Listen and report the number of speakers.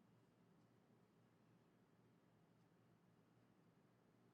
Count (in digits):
0